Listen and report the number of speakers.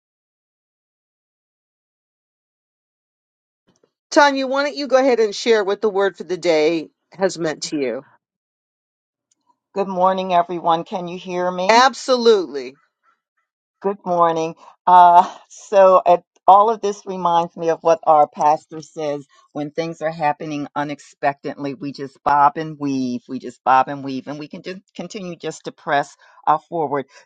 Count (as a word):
two